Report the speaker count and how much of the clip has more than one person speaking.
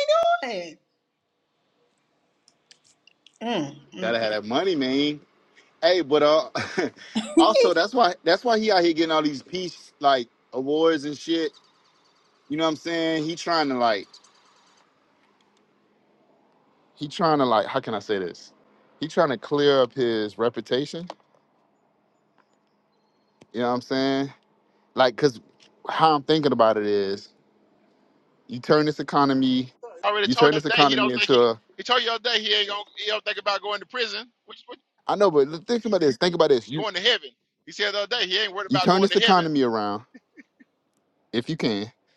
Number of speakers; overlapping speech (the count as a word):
three, about 6%